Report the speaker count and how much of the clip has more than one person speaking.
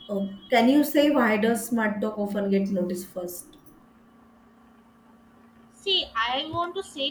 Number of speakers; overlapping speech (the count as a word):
two, no overlap